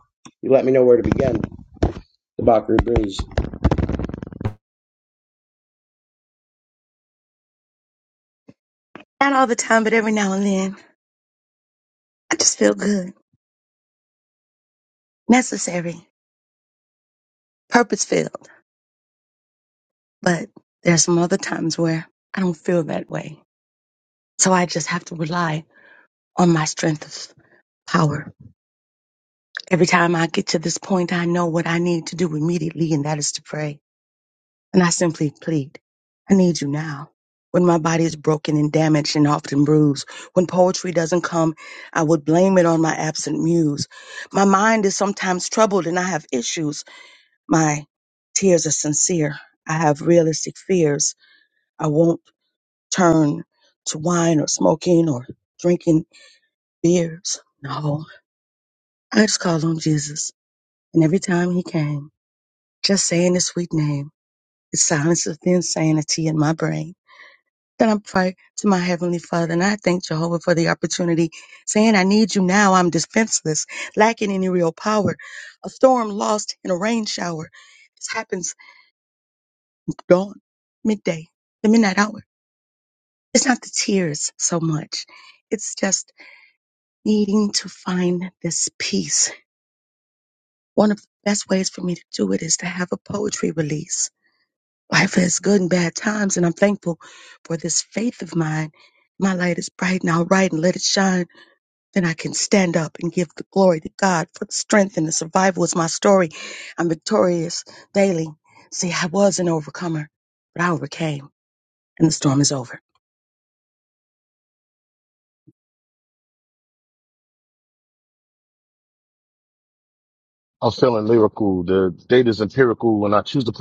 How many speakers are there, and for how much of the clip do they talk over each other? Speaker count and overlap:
3, no overlap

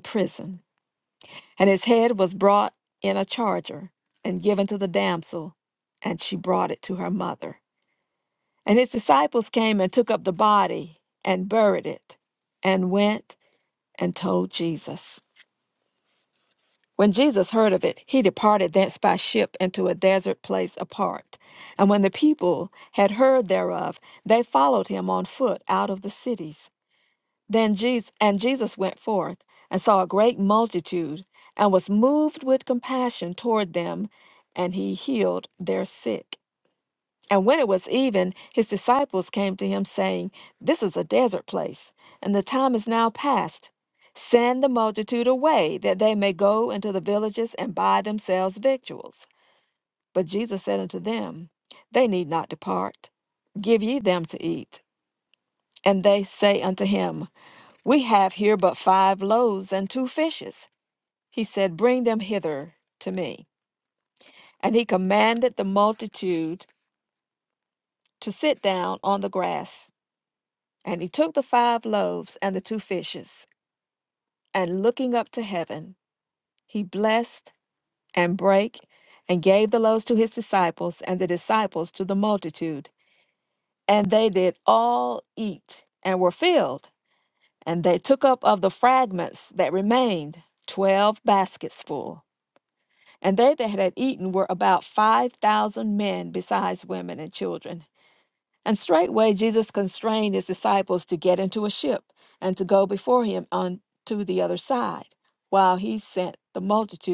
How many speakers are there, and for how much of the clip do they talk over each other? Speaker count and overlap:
1, no overlap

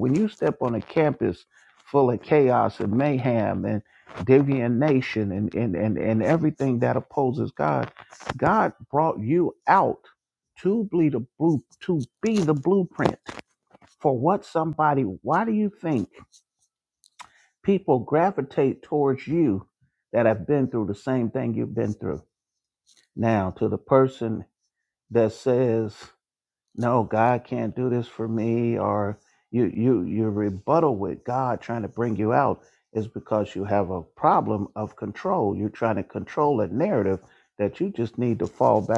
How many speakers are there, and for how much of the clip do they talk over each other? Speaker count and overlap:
1, no overlap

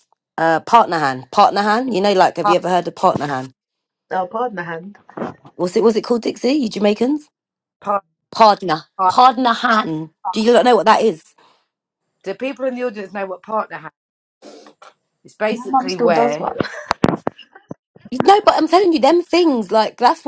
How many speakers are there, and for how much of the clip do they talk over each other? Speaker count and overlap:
3, about 6%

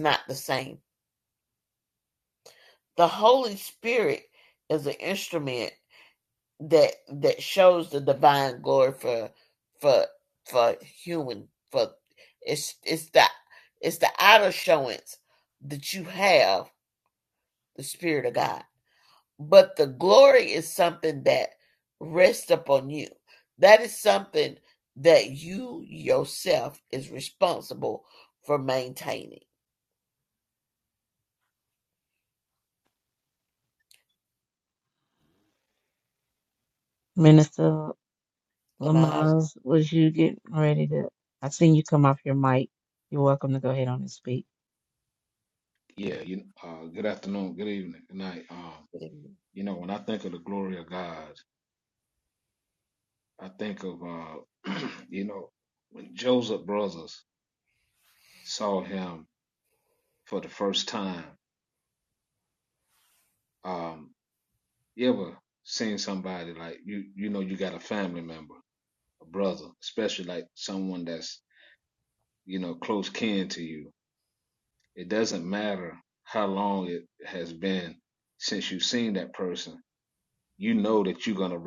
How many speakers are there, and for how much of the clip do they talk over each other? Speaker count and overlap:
3, about 1%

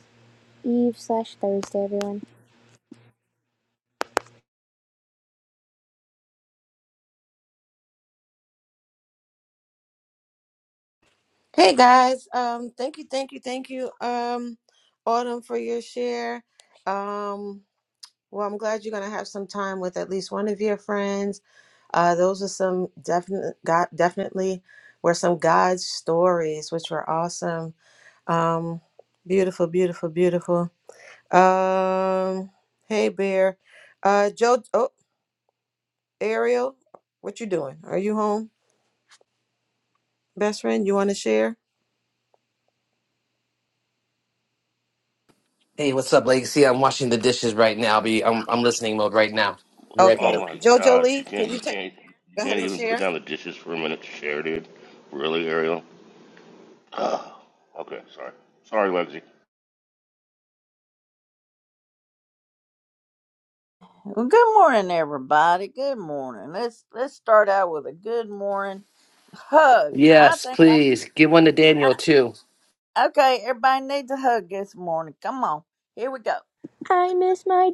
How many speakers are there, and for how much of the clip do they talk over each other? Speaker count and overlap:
5, about 4%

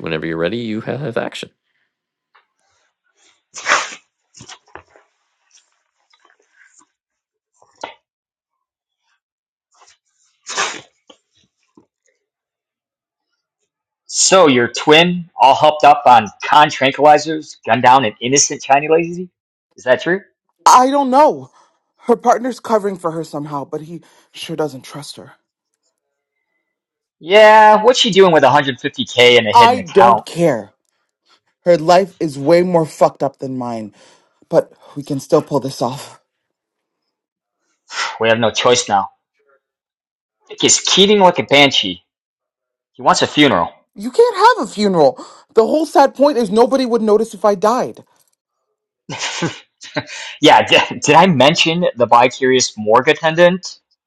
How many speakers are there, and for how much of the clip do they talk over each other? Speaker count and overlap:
3, about 1%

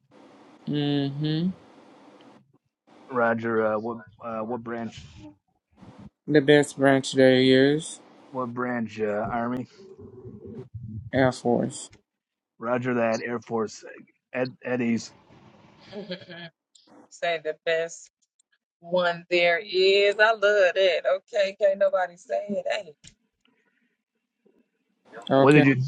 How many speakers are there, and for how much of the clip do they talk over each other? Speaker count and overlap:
3, about 1%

